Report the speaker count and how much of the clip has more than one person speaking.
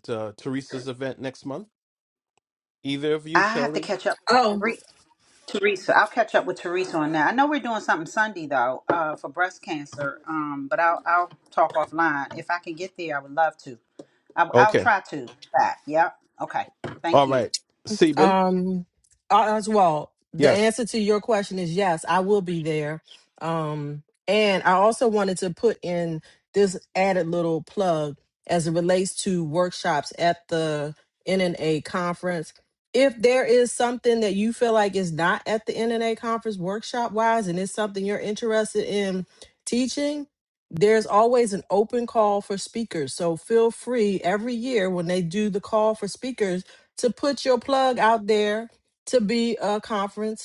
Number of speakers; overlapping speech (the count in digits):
3, about 3%